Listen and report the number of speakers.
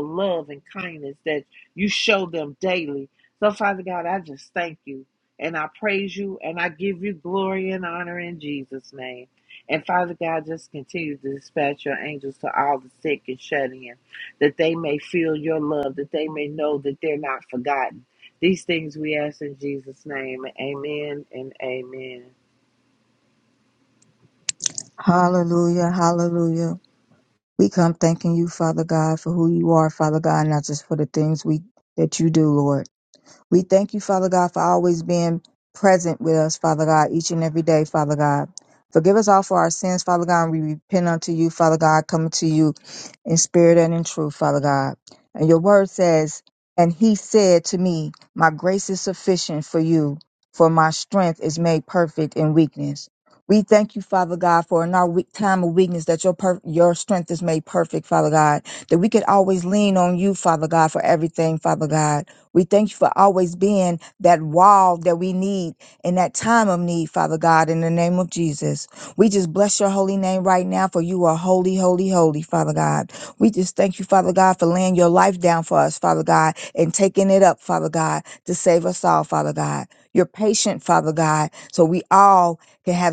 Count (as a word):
two